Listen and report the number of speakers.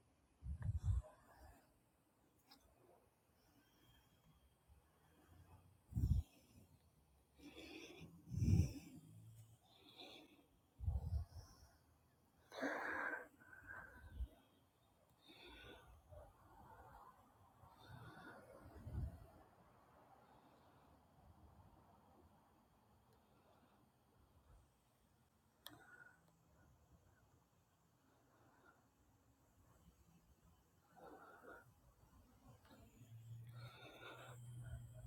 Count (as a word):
zero